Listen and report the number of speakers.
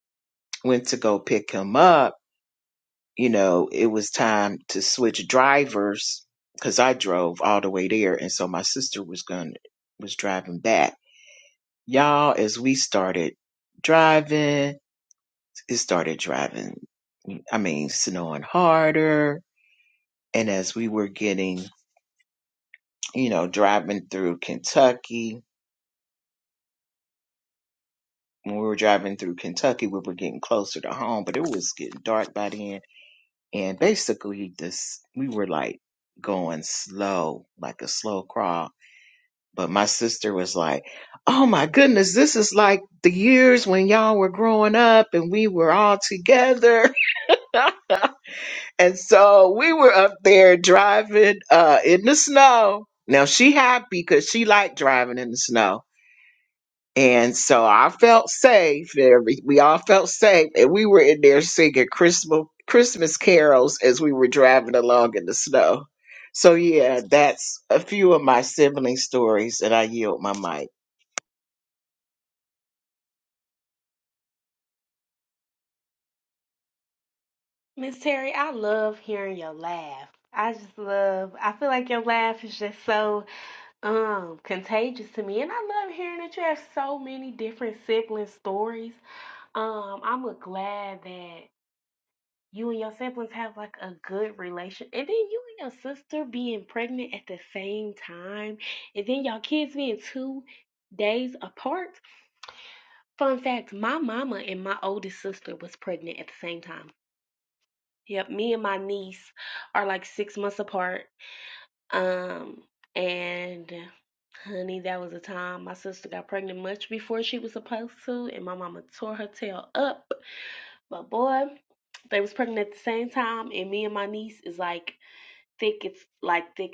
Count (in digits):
2